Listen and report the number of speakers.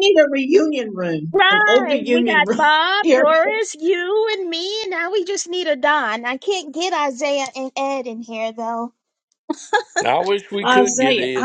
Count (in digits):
3